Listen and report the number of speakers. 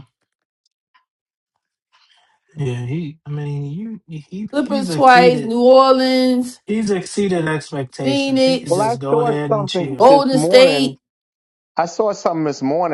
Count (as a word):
three